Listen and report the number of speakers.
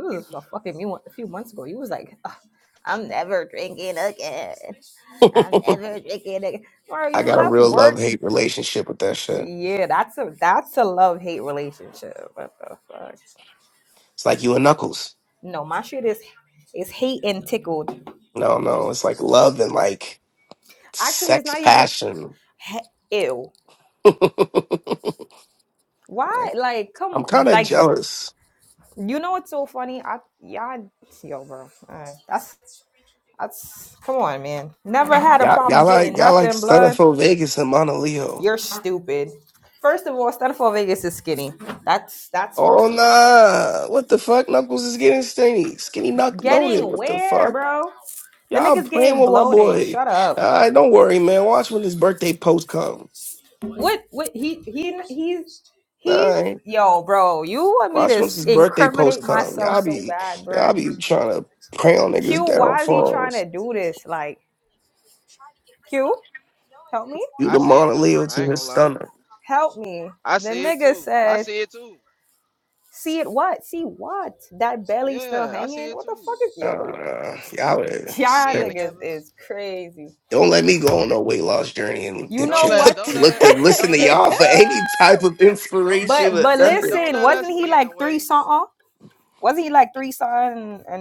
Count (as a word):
three